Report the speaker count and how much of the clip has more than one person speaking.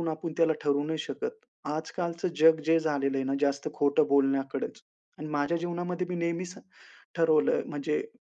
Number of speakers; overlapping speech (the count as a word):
one, no overlap